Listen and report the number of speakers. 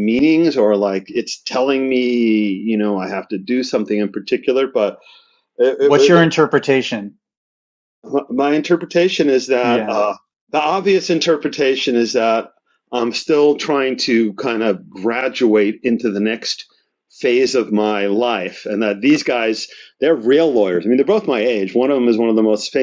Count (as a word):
two